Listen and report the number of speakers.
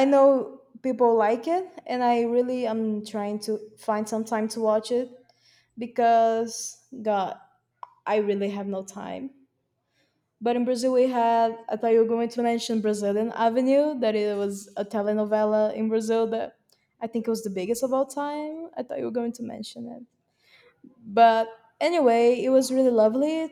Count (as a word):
one